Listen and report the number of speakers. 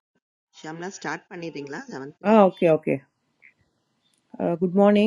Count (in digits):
2